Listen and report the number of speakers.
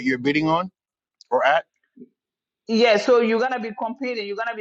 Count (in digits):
2